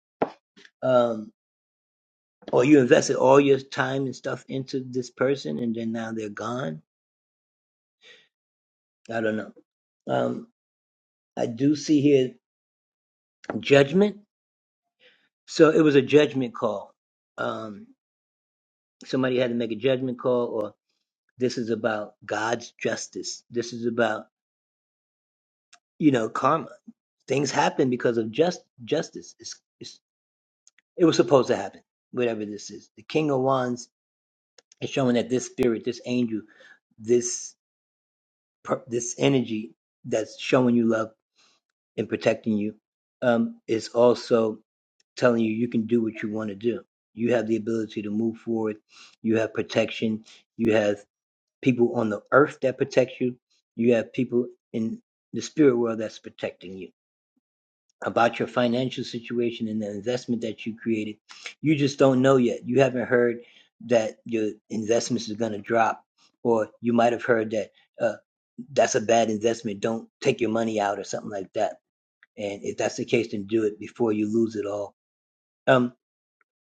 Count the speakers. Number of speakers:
one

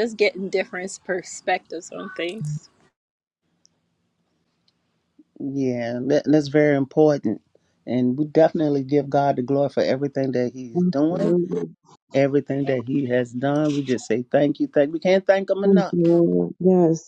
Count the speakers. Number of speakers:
three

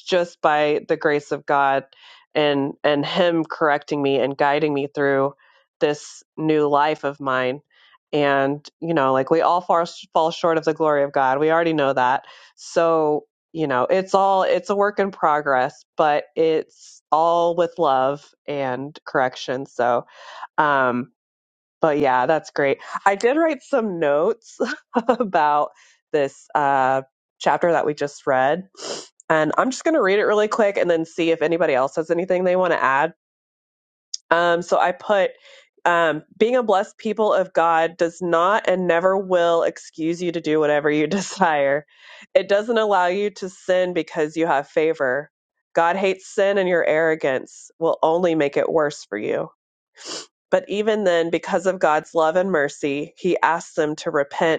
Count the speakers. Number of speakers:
one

